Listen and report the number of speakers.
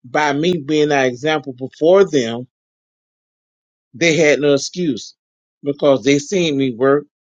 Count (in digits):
1